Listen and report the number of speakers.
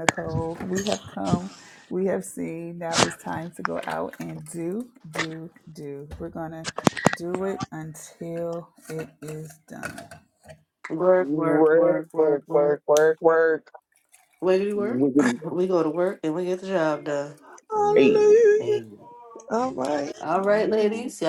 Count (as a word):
four